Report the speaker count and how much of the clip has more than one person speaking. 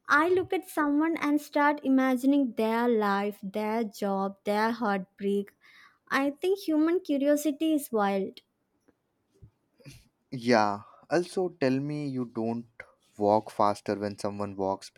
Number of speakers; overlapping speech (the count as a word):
two, no overlap